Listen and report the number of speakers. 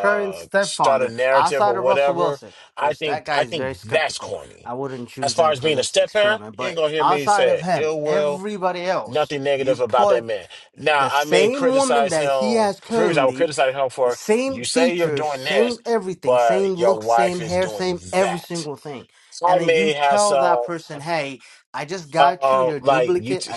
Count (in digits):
2